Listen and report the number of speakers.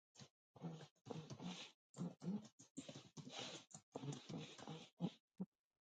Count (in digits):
0